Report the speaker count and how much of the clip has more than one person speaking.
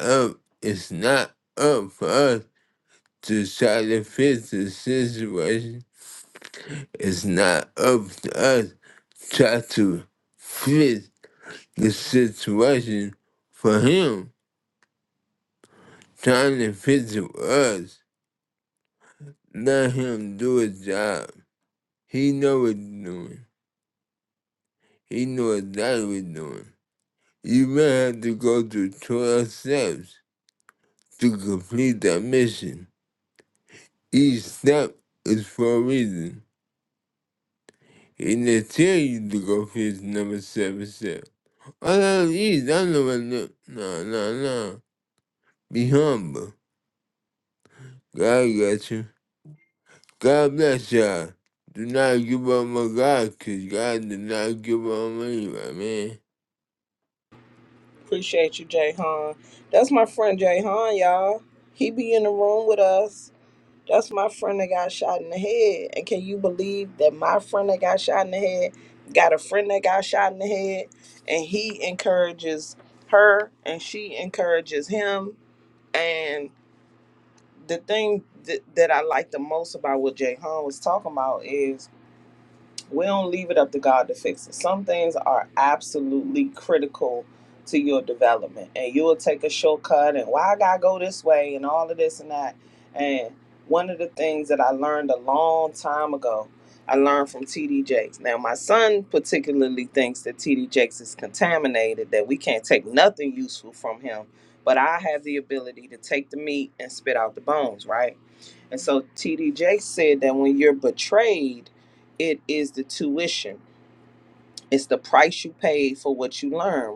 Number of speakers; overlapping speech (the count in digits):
2, no overlap